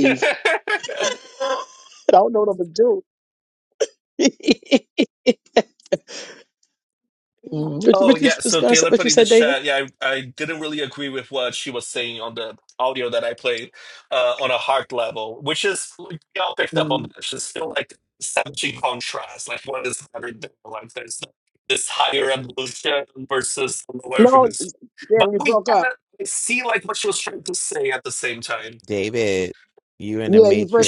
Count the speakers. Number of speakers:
three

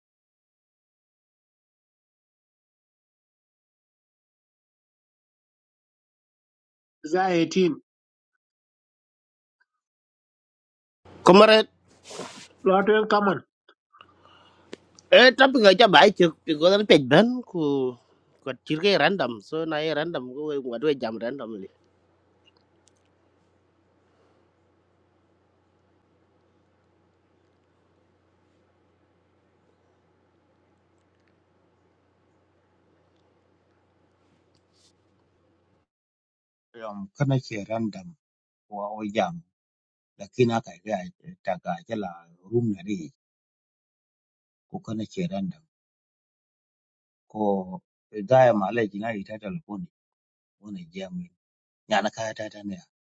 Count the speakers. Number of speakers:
three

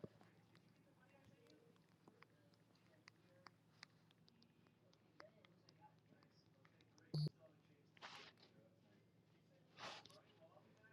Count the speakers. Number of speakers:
zero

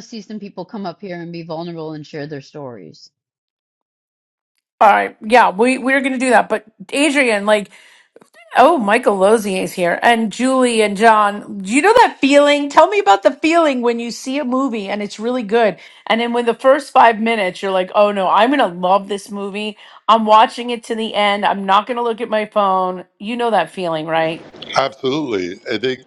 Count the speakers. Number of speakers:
three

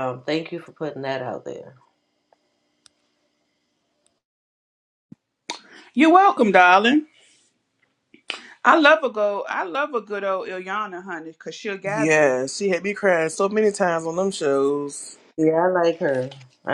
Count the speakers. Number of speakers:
three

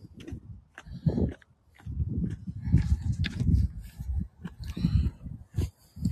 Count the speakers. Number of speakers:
zero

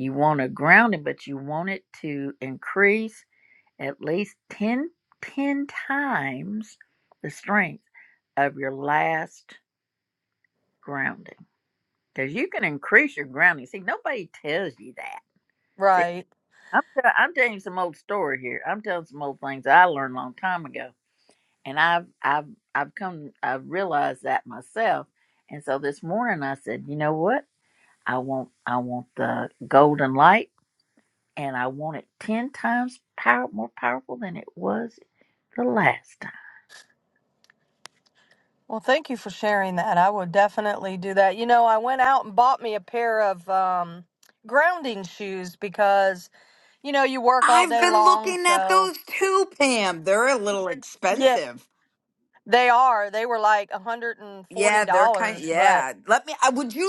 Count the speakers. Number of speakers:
three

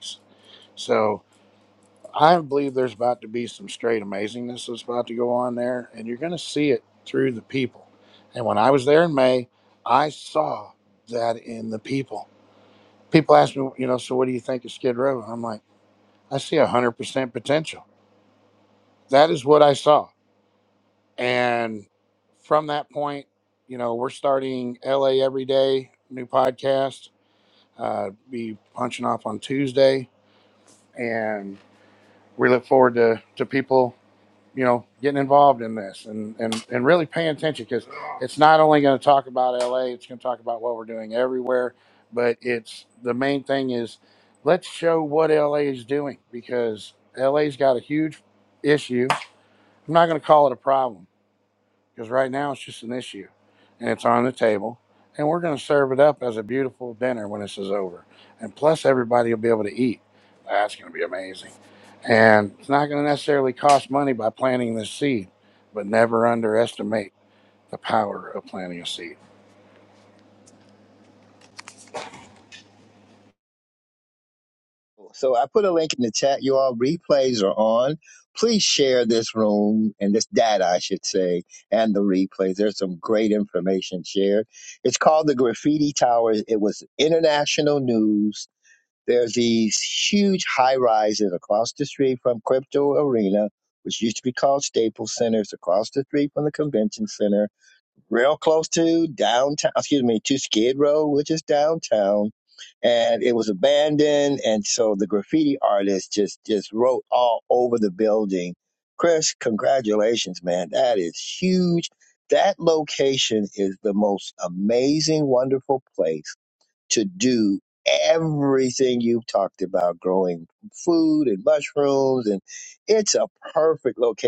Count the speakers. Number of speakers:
two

